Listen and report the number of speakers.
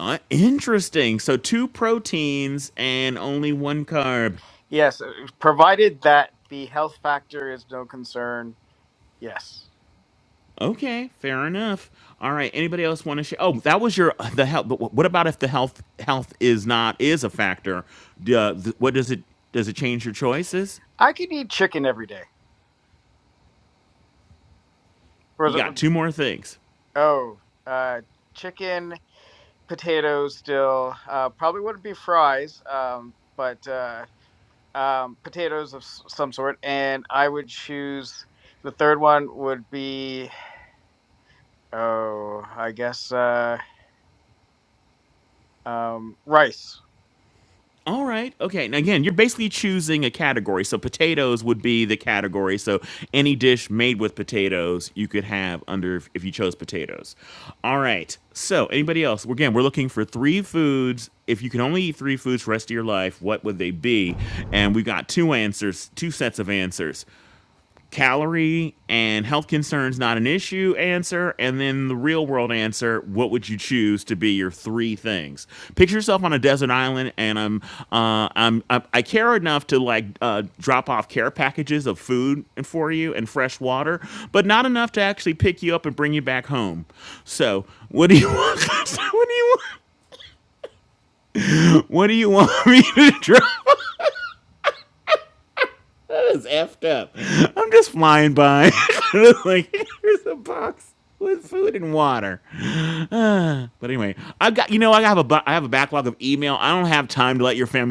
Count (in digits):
2